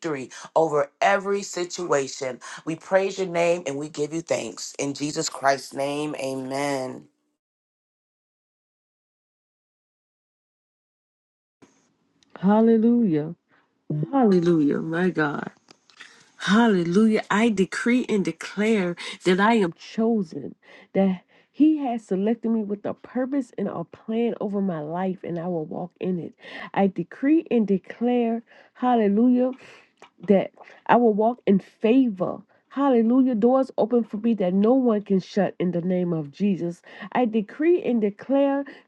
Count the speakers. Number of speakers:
2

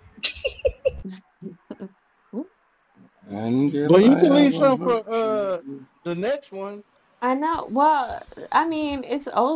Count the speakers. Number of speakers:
3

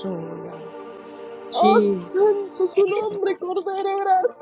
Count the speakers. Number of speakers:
2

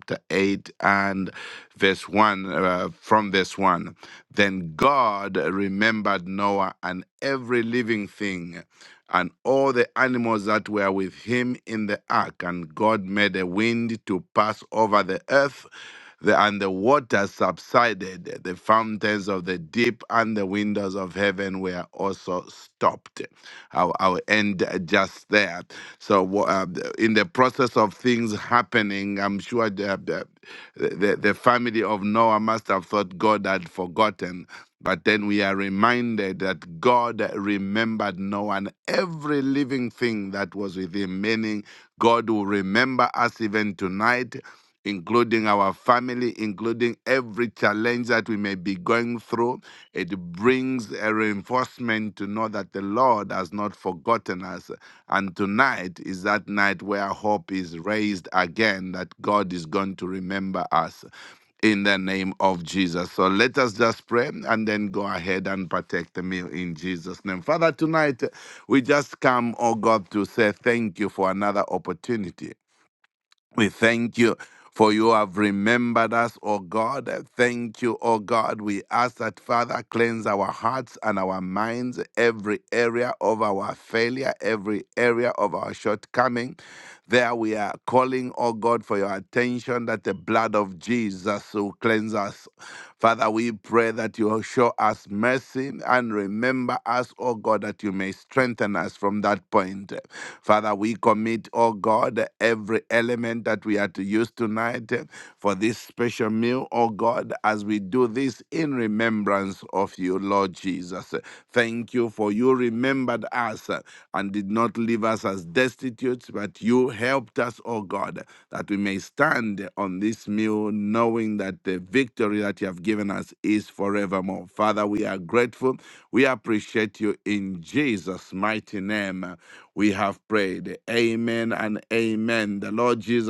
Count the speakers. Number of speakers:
1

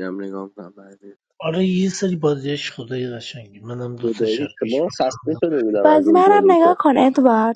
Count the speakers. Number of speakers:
3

